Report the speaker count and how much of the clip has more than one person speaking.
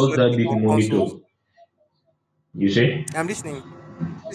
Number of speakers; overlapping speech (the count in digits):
2, about 26%